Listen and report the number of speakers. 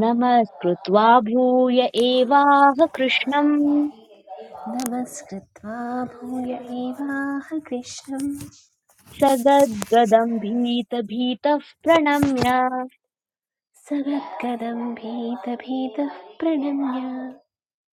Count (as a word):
two